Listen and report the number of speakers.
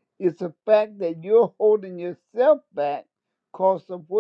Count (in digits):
1